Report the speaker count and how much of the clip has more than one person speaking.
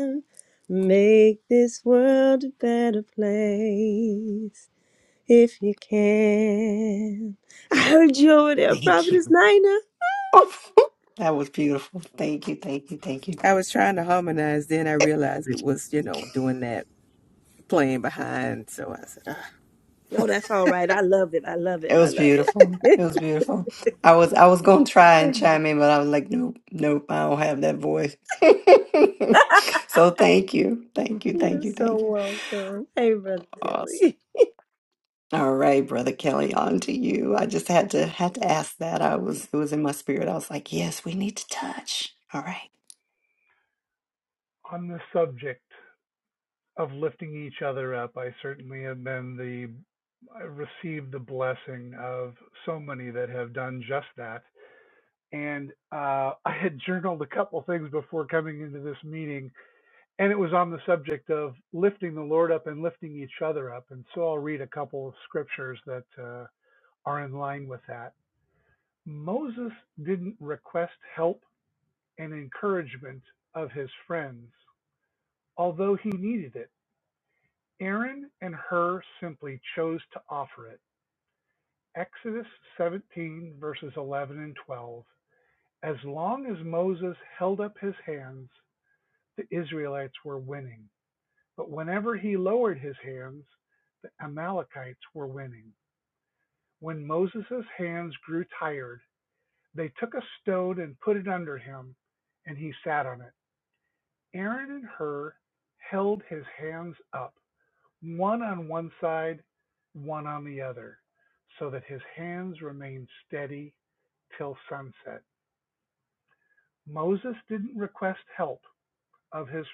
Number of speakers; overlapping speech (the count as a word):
four, about 3%